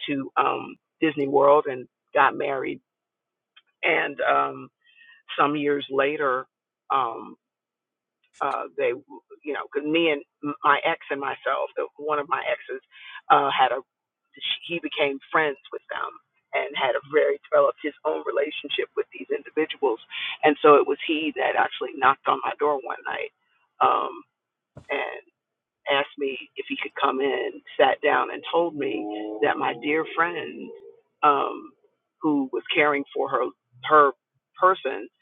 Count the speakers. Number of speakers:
1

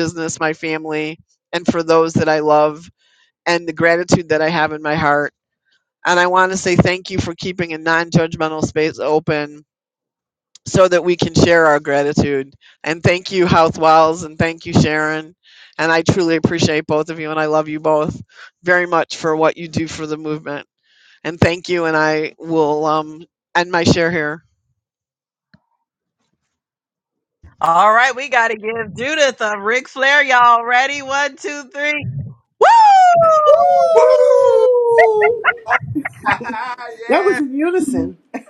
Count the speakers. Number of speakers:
4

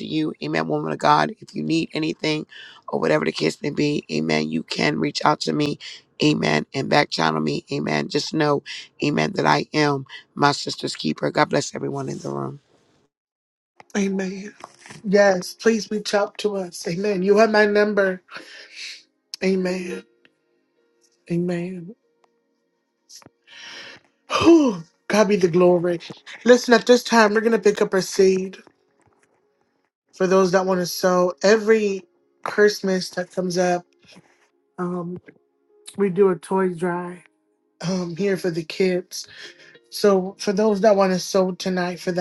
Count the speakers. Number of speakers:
2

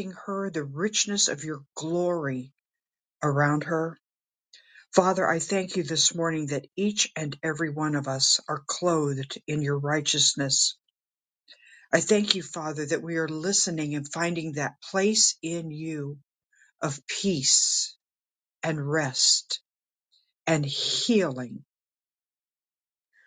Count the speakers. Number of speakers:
1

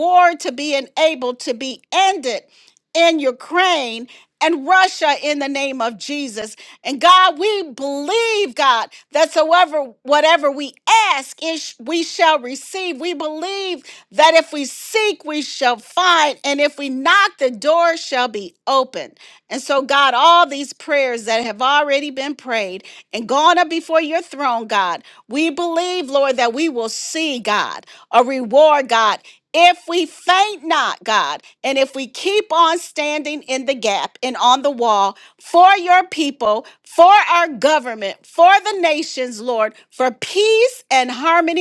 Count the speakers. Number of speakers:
1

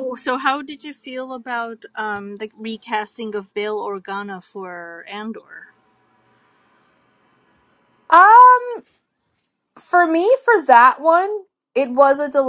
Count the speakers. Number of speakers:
2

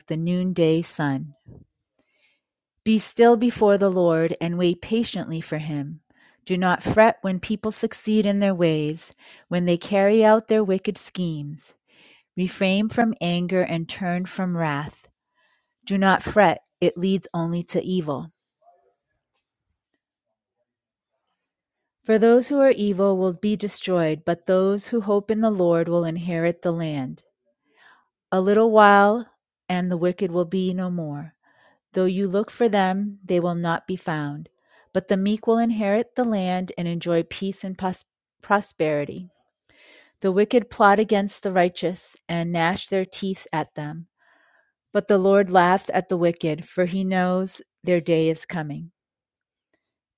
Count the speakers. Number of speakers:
1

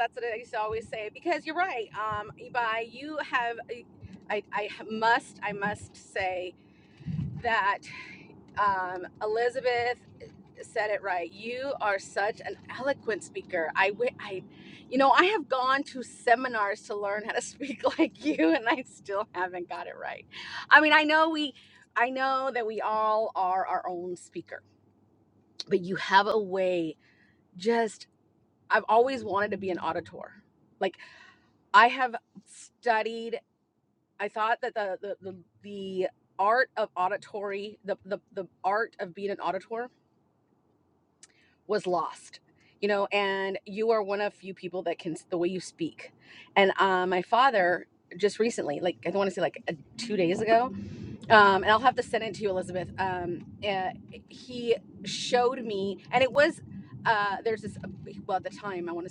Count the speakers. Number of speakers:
1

